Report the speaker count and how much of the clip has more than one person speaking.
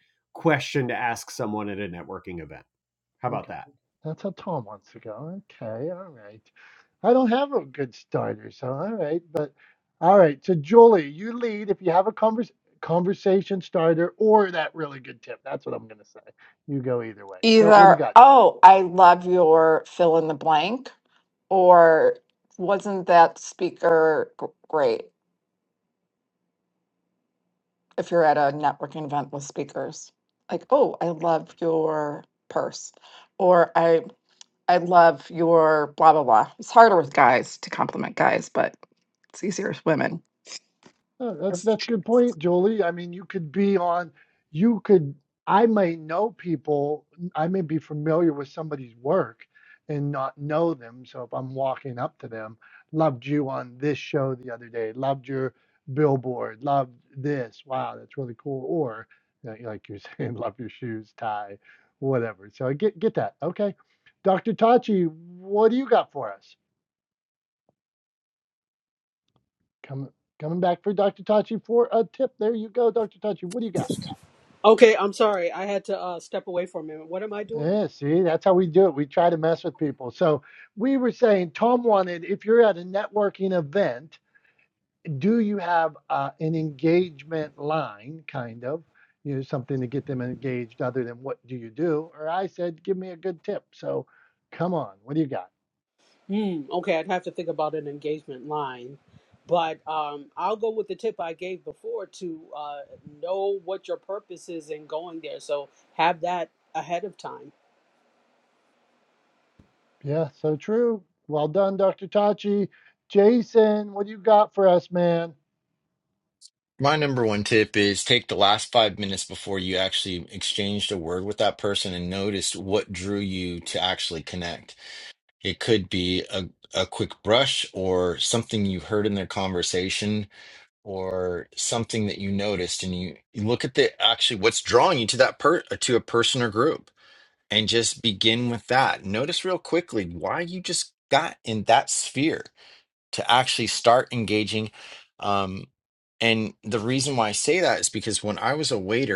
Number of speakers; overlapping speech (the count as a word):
five, about 1%